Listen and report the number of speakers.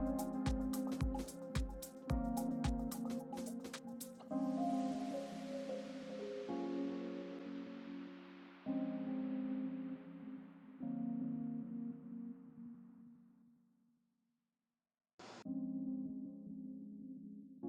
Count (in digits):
0